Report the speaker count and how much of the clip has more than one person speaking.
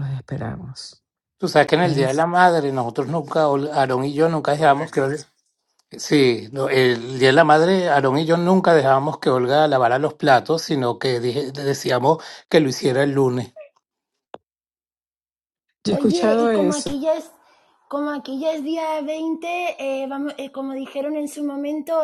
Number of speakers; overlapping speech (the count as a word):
three, about 6%